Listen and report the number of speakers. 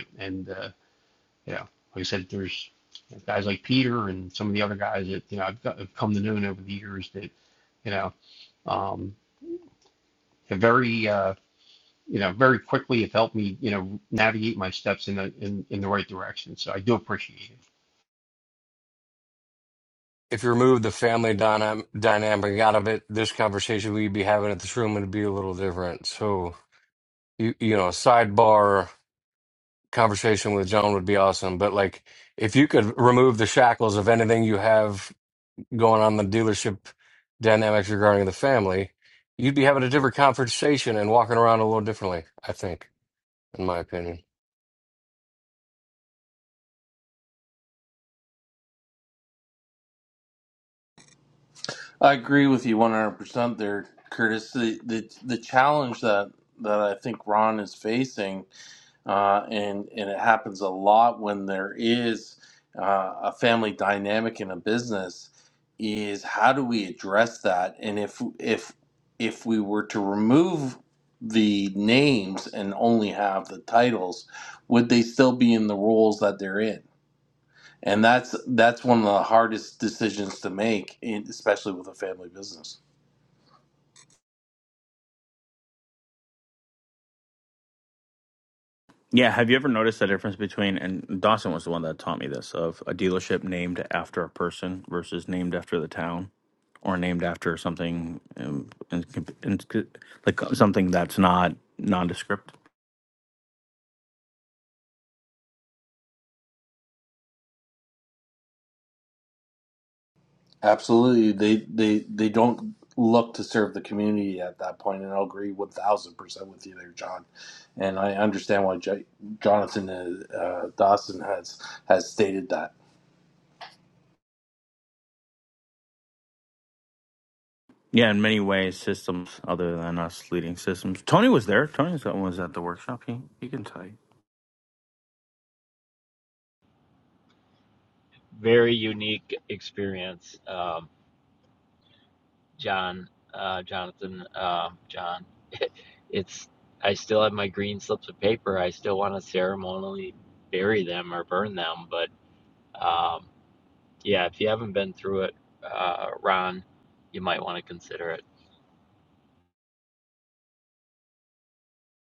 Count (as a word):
five